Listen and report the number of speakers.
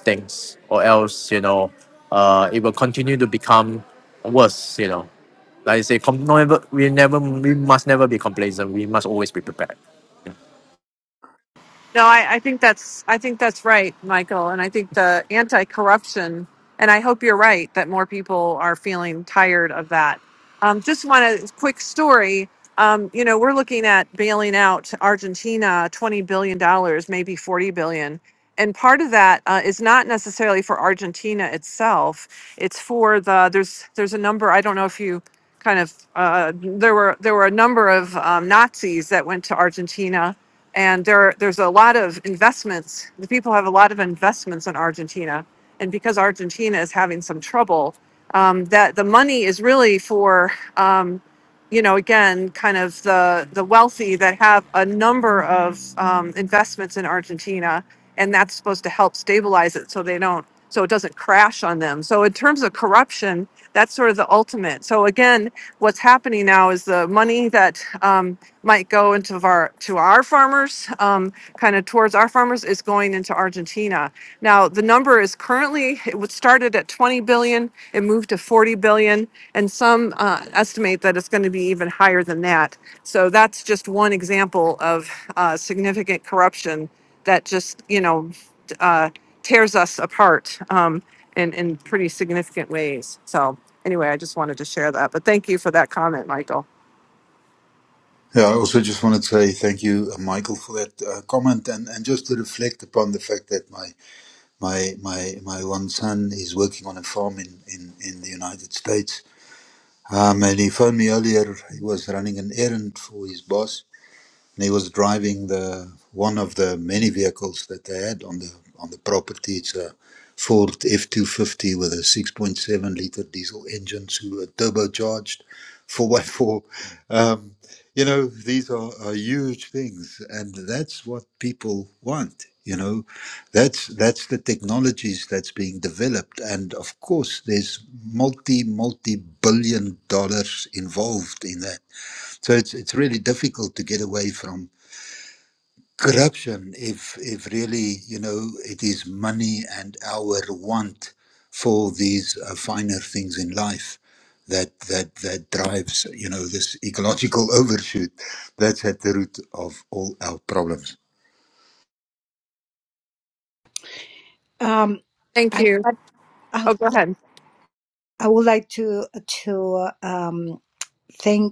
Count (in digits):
4